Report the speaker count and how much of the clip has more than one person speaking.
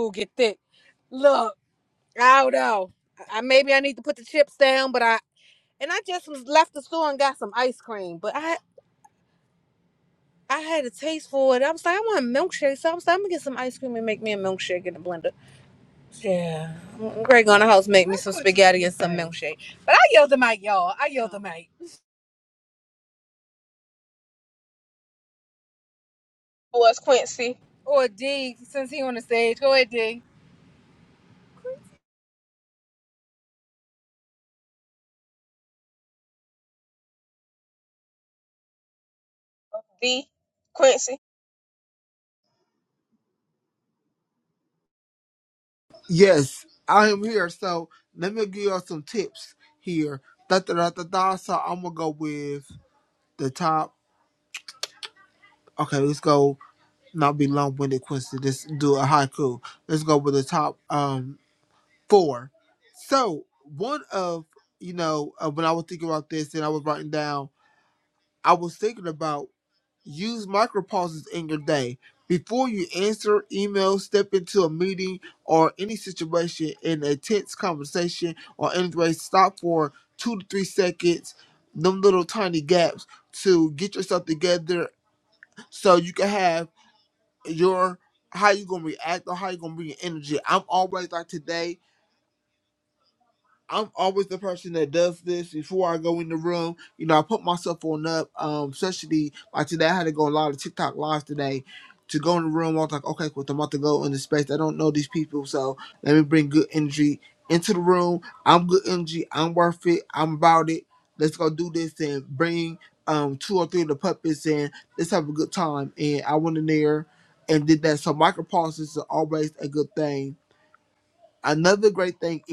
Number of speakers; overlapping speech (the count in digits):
3, no overlap